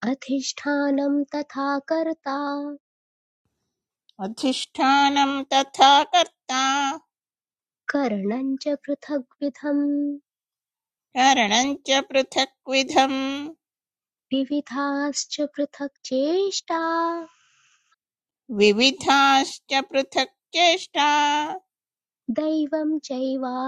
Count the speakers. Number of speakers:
two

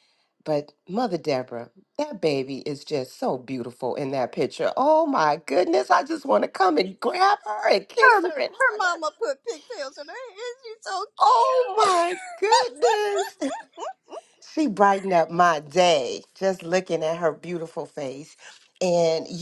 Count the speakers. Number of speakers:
two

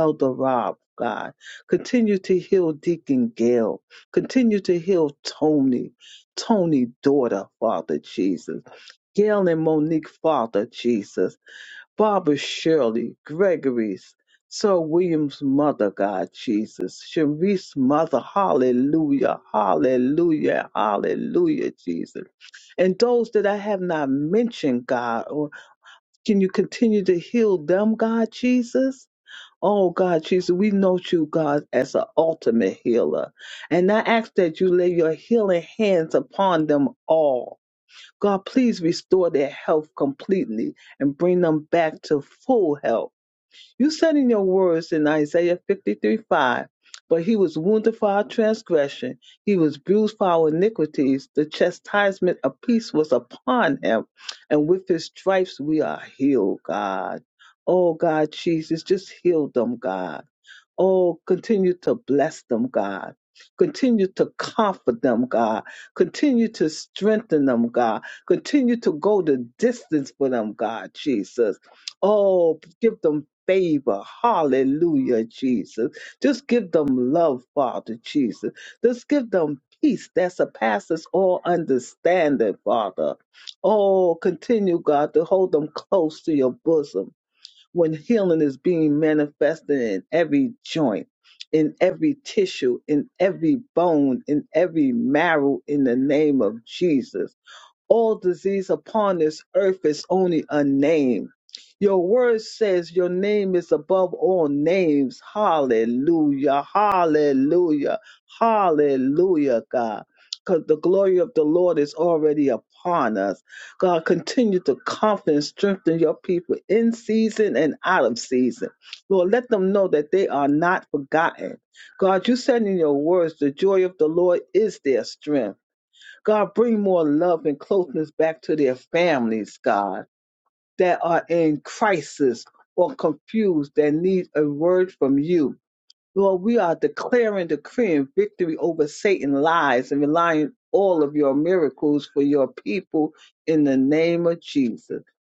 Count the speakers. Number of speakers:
one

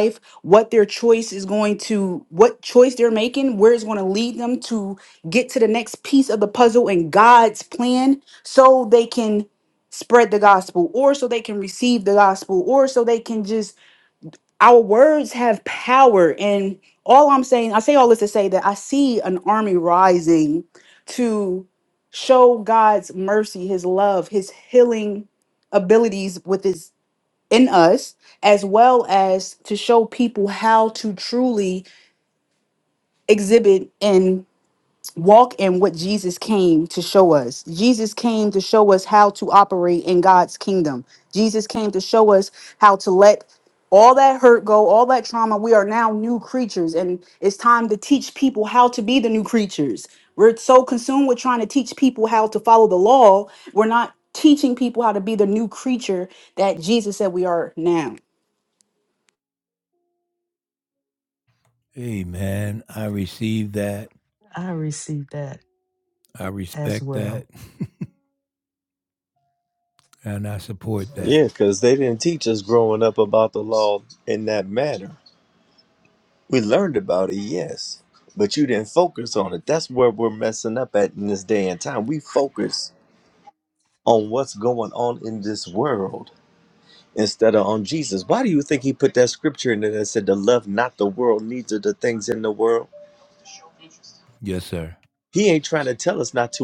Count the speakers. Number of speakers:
four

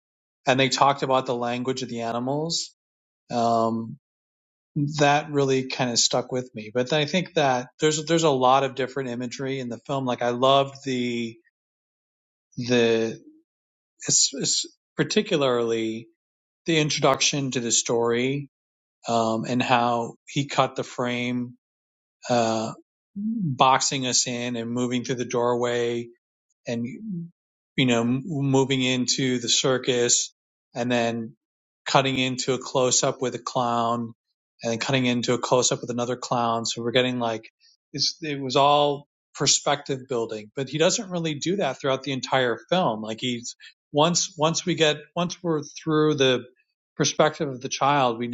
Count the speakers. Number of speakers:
one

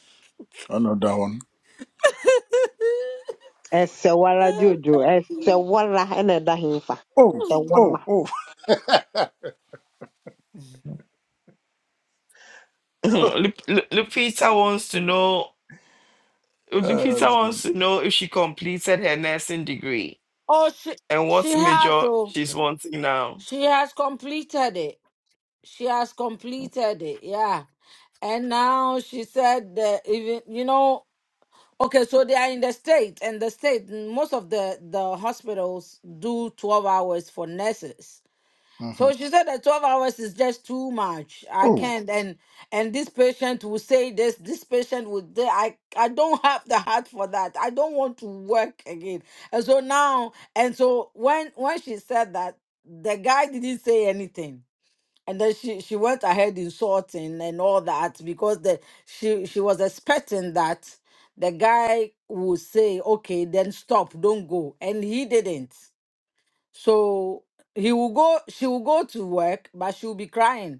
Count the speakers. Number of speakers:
four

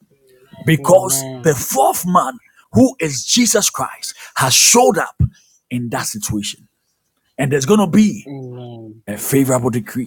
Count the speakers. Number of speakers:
two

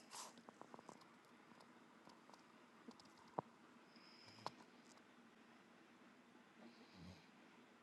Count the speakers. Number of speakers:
zero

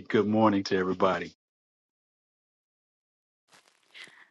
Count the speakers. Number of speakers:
one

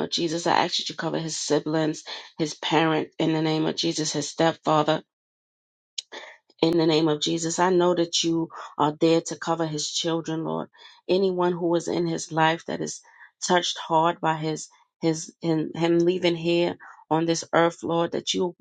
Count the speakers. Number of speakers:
one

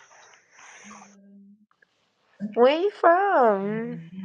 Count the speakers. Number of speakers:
one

